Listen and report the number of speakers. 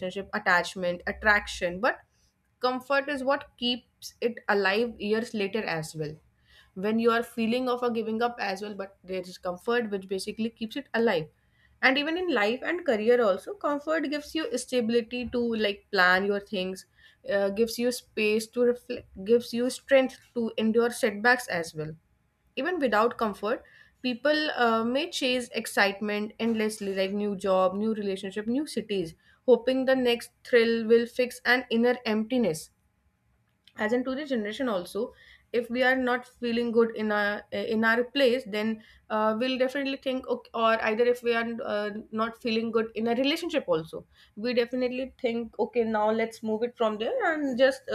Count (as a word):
one